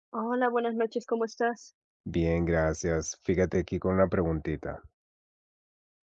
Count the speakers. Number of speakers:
2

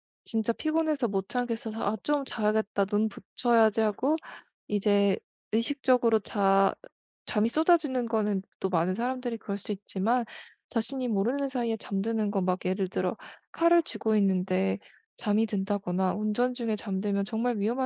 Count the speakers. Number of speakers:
1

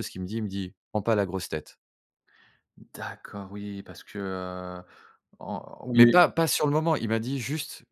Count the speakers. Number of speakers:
2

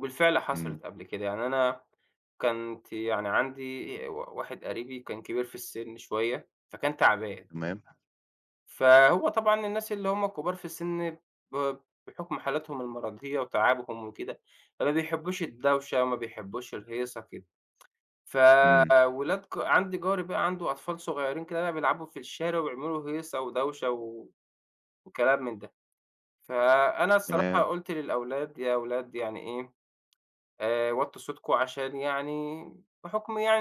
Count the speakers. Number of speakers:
2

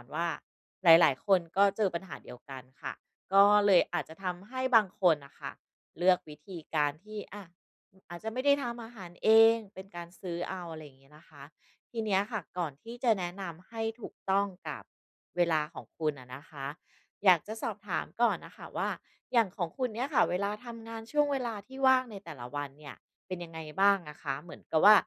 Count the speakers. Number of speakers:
1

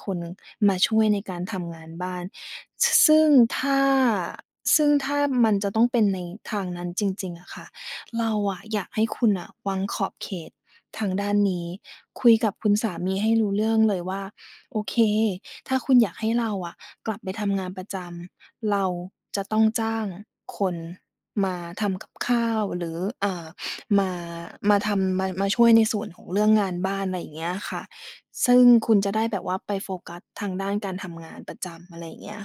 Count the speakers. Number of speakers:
1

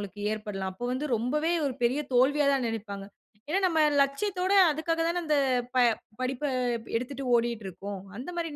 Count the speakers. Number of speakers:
1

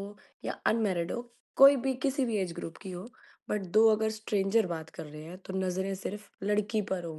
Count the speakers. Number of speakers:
1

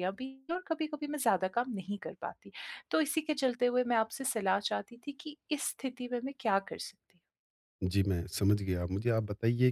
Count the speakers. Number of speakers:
2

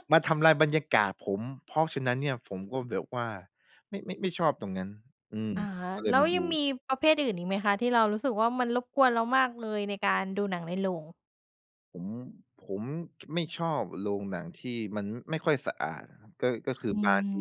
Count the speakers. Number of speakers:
2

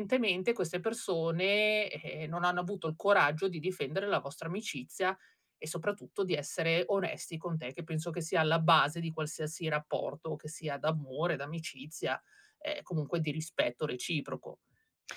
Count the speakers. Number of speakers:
1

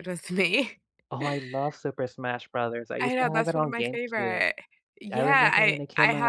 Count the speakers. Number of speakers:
2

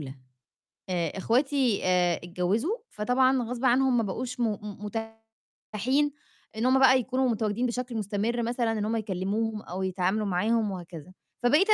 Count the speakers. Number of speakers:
1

